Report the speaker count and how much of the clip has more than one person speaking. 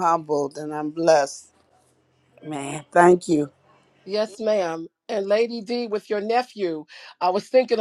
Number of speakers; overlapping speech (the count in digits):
2, no overlap